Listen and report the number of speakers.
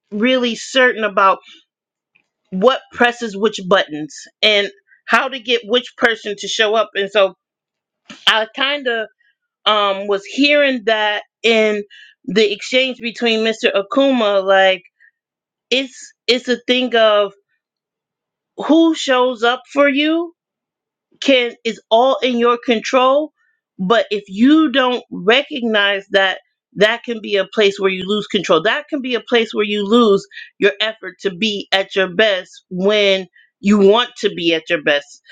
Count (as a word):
one